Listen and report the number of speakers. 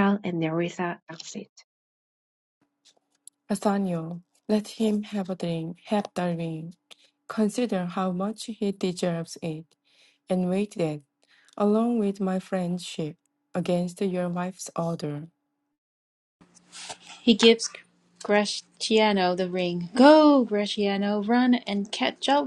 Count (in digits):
3